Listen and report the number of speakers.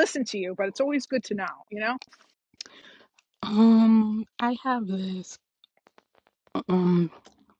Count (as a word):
two